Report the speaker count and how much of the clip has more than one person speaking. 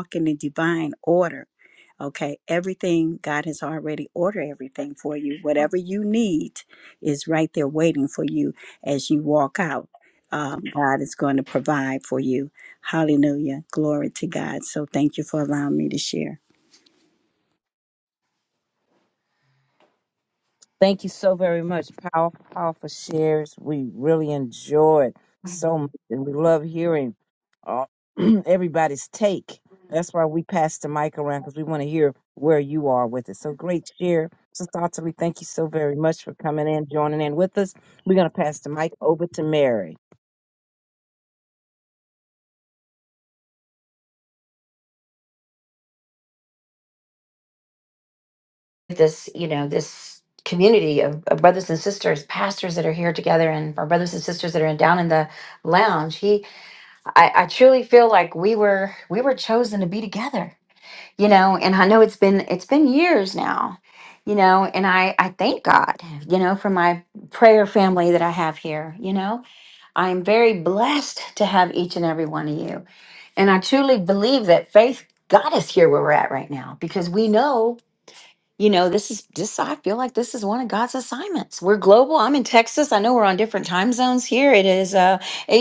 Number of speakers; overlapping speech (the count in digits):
3, no overlap